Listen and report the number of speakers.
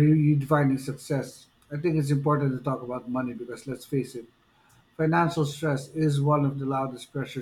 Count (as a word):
one